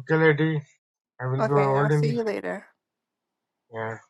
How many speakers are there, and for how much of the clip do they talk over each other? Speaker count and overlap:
two, about 19%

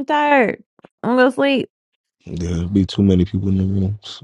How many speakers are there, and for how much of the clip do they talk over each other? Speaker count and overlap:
two, no overlap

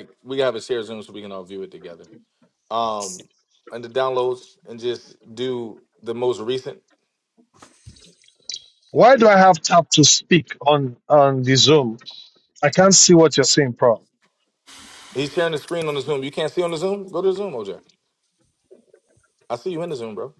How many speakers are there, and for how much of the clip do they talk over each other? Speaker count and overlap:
two, no overlap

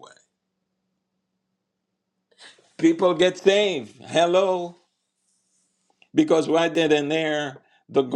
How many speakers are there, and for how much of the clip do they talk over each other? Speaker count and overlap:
one, no overlap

